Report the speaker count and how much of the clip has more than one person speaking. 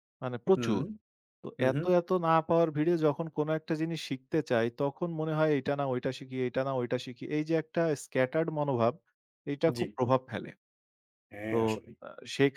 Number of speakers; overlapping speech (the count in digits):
2, about 5%